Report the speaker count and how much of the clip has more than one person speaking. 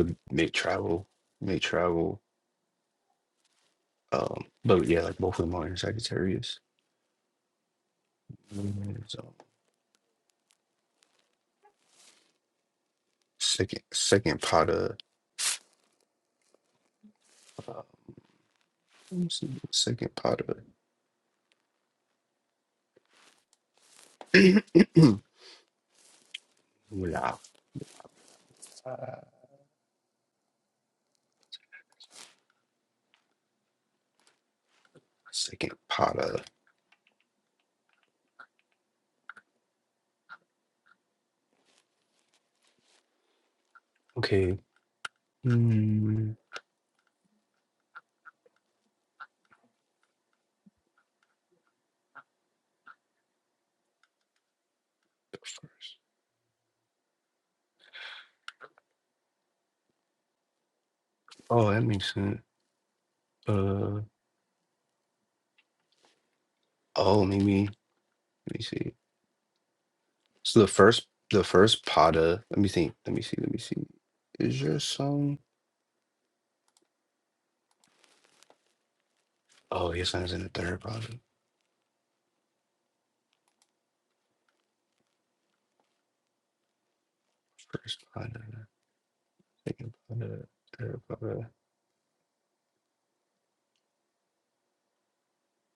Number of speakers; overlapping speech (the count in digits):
1, no overlap